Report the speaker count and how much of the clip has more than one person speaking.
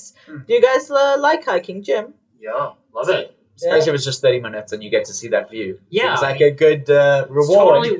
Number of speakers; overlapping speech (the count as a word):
three, about 16%